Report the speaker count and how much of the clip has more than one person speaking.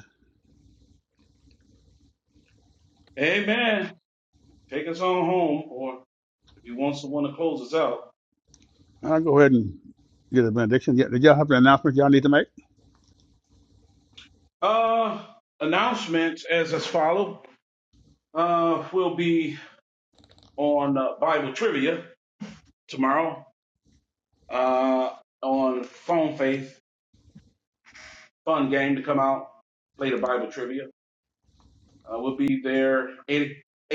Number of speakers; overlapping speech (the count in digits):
2, no overlap